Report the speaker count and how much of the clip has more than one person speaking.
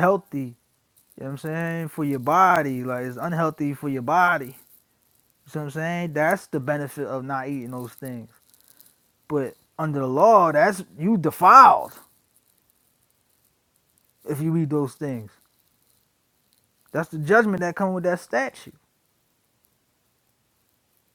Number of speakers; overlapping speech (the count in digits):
1, no overlap